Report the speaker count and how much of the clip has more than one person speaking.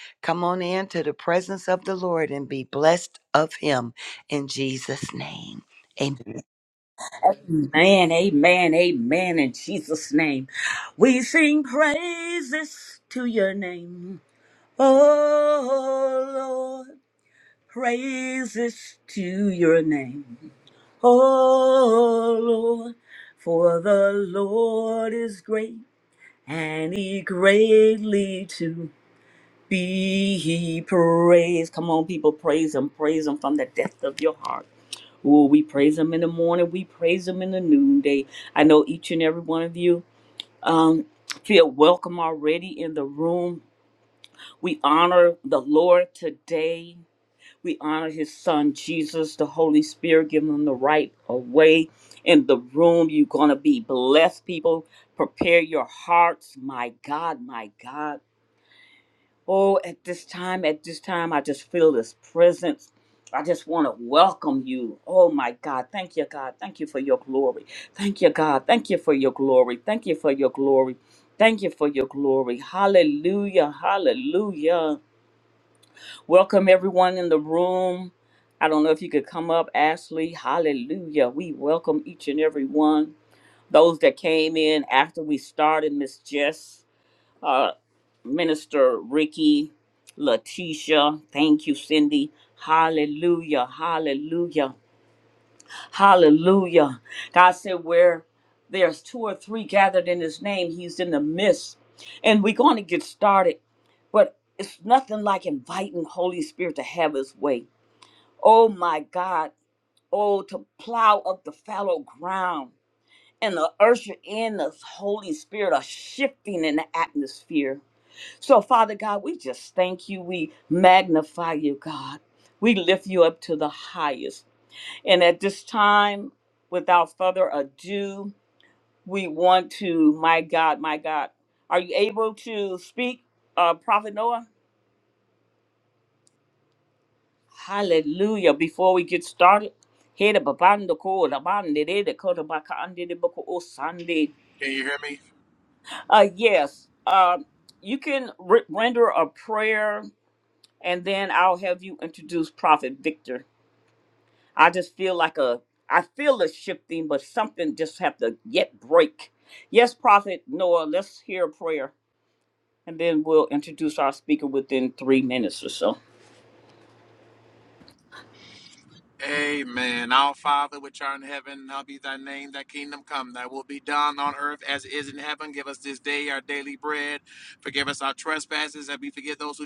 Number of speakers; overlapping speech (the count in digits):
3, no overlap